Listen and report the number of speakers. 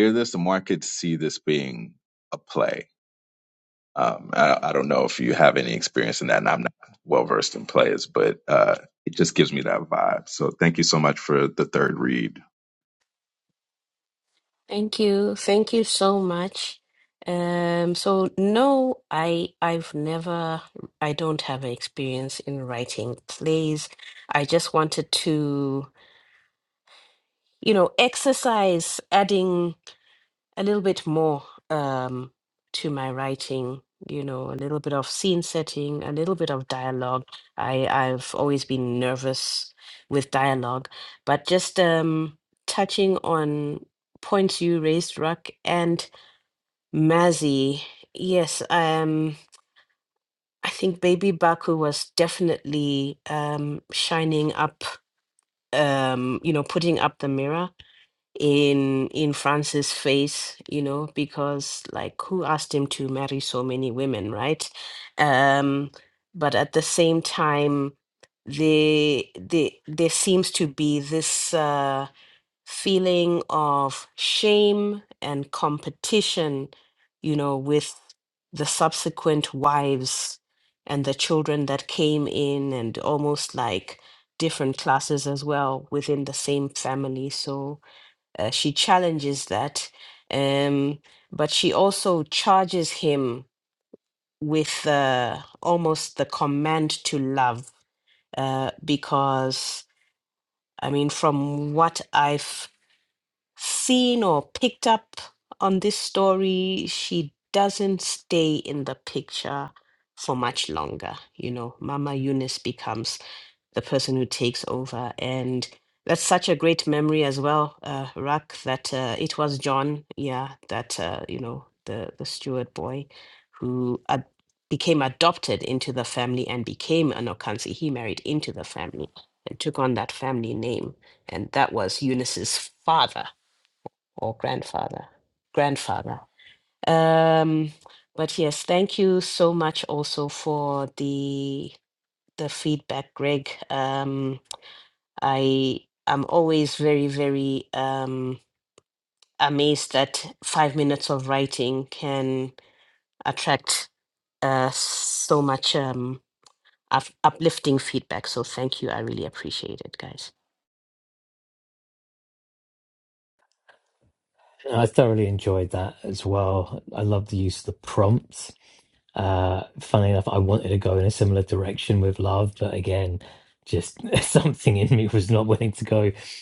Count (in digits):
3